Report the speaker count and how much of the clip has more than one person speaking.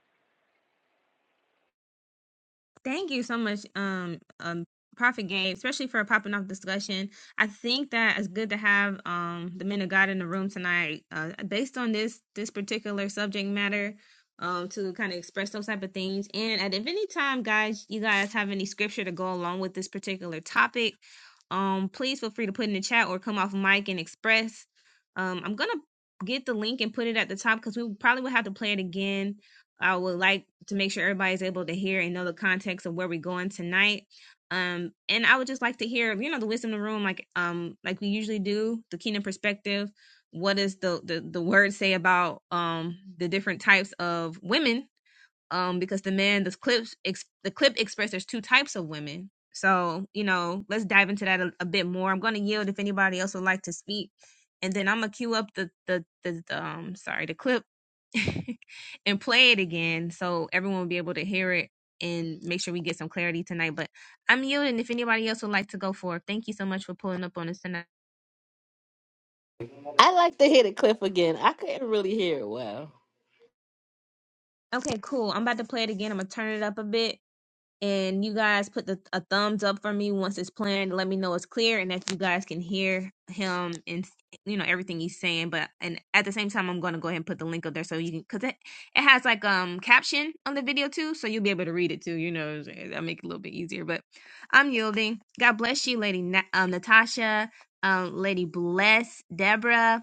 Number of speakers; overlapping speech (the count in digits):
2, no overlap